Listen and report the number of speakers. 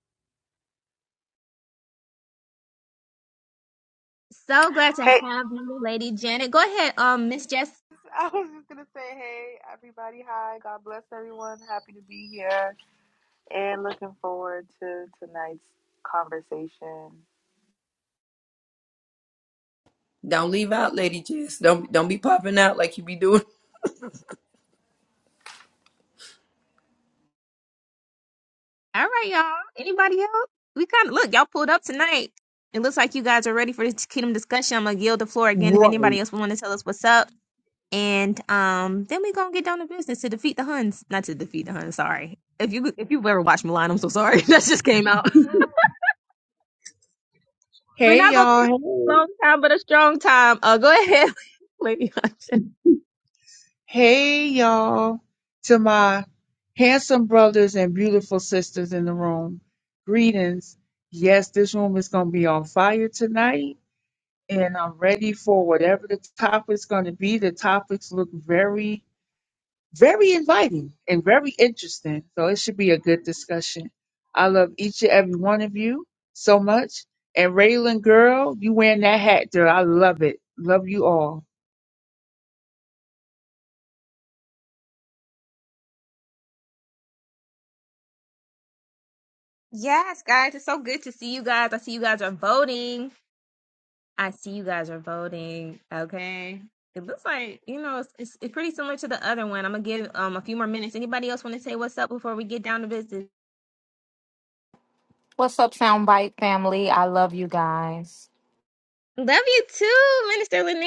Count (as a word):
five